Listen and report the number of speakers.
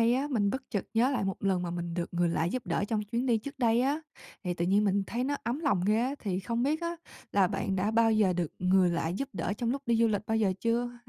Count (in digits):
1